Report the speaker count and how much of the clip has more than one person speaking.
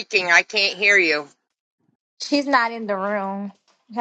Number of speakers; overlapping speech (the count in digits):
2, no overlap